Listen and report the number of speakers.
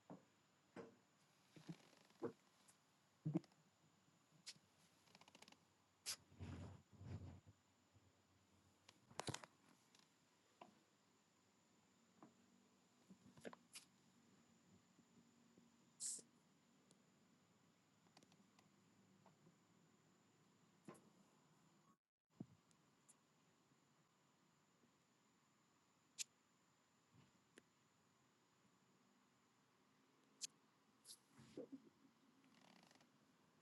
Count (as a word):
zero